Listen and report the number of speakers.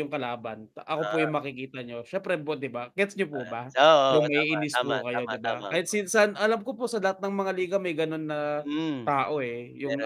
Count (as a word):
two